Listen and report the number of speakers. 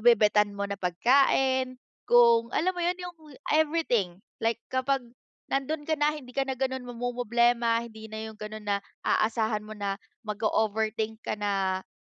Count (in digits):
1